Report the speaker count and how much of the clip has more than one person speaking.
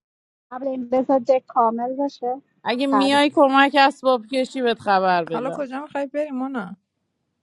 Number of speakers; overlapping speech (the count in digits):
3, about 8%